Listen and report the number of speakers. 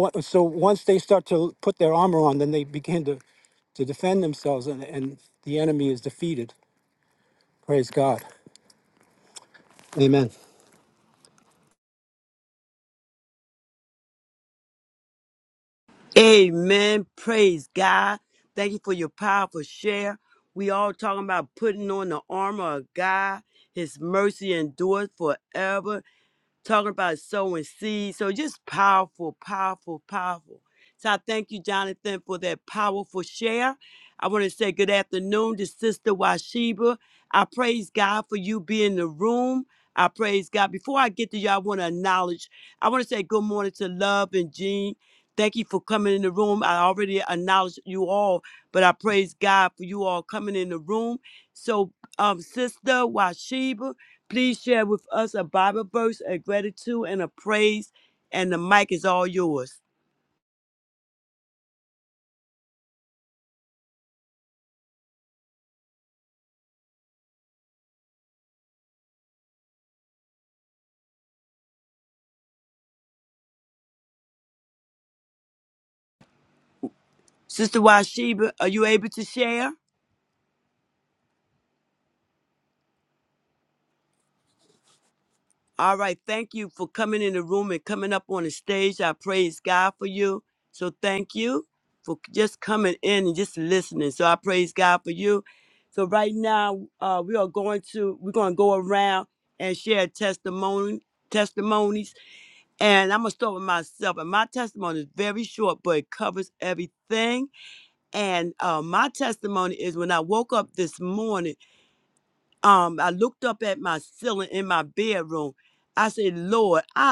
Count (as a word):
two